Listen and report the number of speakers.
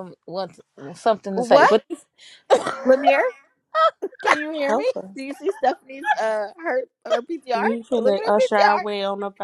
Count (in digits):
3